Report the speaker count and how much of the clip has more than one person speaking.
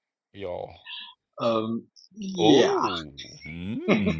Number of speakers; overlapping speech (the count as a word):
two, about 11%